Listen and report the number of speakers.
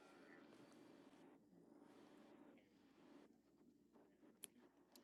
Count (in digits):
0